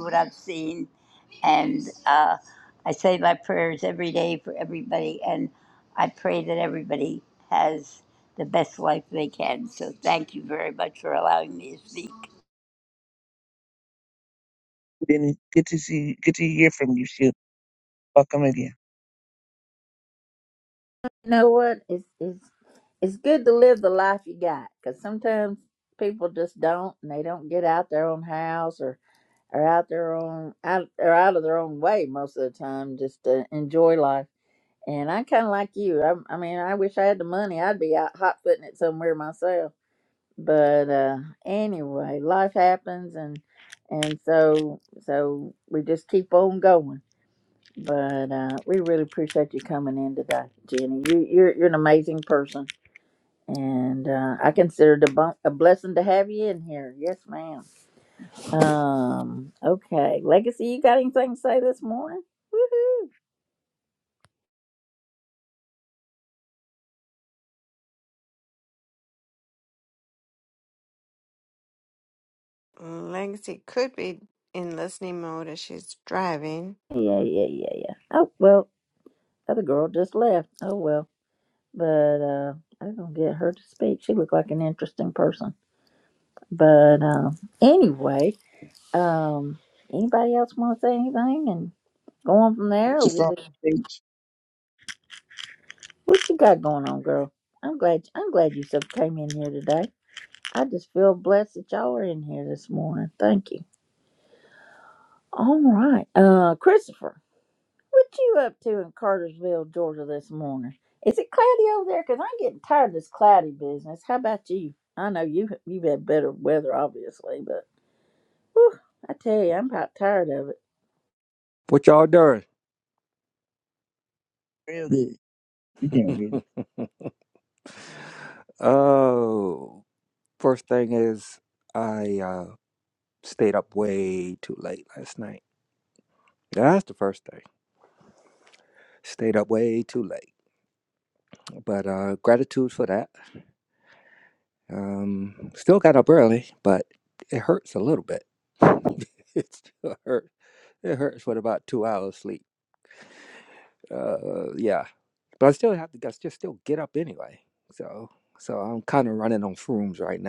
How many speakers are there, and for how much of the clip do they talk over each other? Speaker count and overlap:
5, under 1%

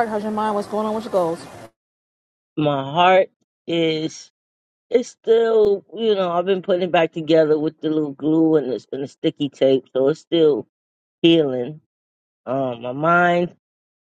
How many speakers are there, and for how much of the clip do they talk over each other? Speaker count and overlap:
2, no overlap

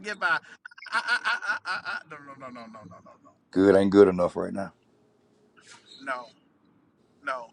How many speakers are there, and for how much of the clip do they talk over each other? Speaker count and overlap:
2, no overlap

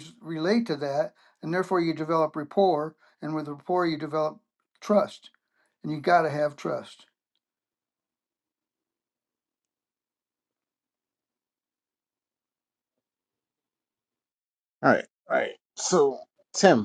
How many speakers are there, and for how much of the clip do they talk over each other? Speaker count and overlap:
2, no overlap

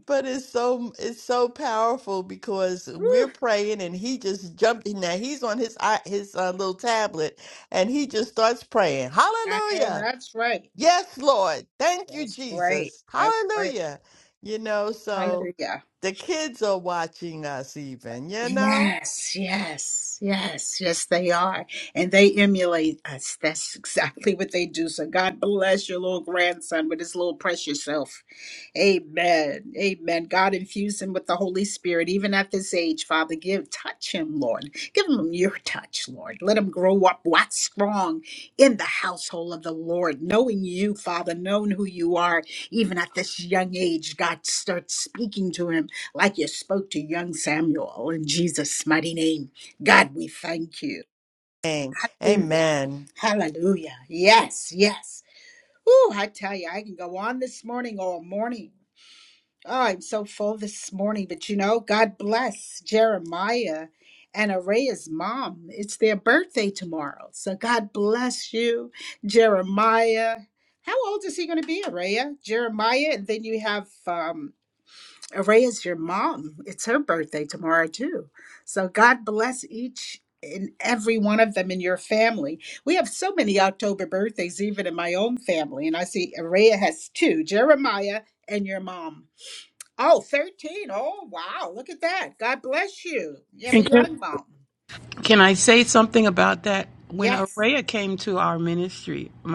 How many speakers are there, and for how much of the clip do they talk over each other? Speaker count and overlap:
3, about 4%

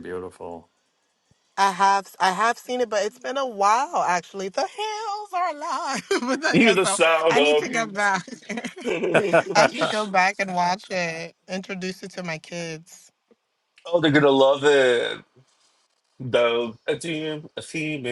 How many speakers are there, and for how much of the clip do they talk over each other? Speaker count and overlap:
3, about 11%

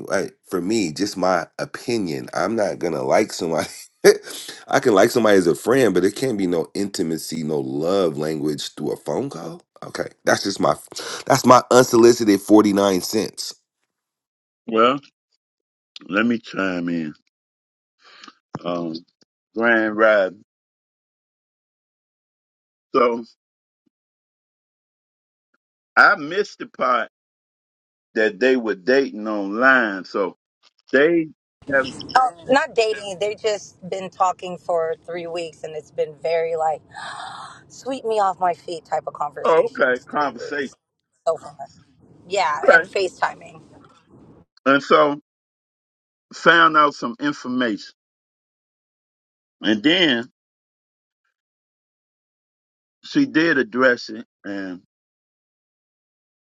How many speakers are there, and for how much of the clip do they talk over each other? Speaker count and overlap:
3, about 2%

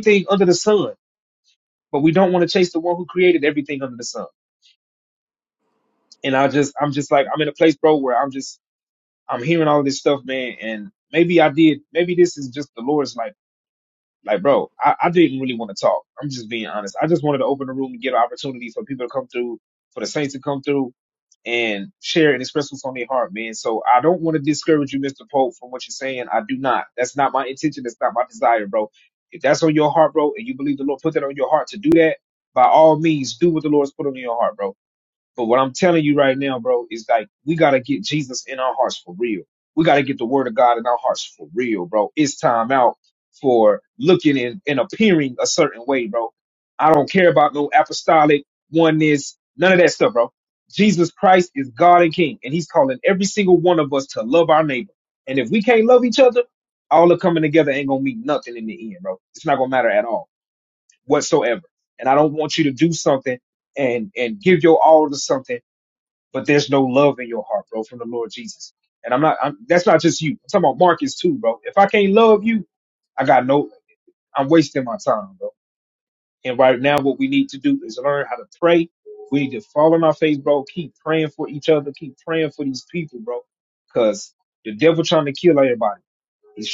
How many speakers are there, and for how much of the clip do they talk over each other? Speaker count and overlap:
1, no overlap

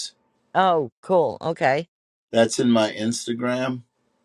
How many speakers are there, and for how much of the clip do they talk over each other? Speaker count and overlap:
2, no overlap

